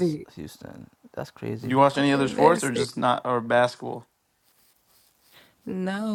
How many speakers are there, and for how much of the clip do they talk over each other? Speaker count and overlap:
3, about 18%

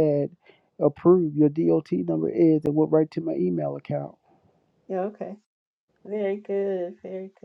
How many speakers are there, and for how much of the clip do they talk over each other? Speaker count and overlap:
2, no overlap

